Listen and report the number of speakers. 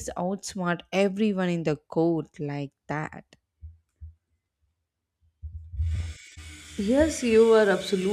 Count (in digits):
2